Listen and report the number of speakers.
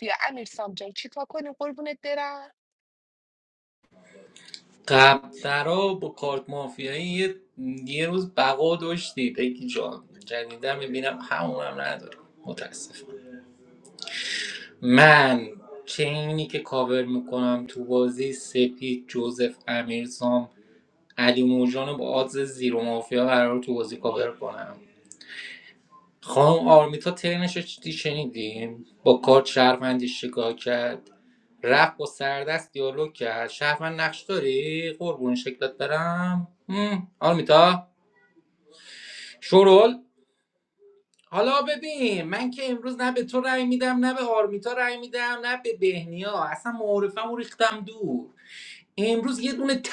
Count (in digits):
2